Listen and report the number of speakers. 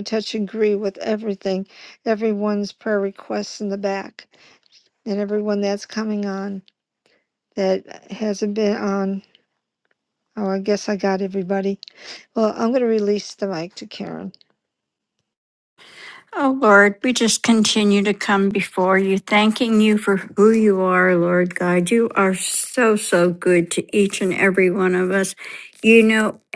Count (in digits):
2